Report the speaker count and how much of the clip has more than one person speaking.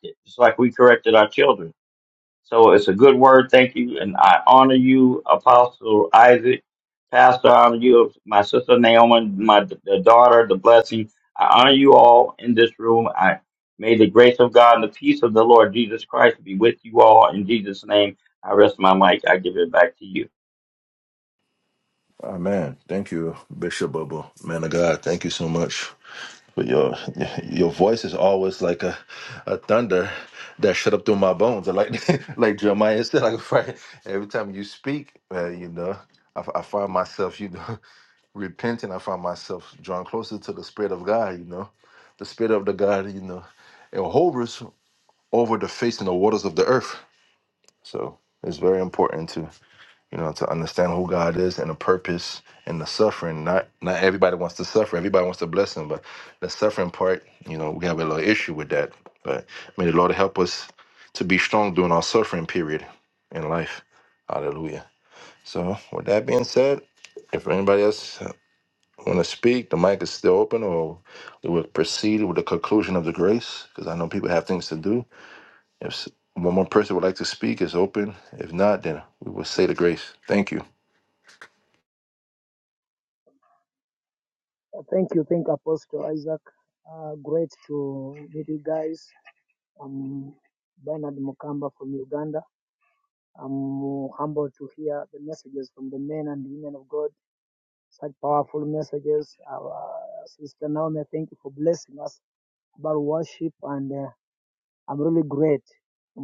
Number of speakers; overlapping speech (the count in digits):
3, no overlap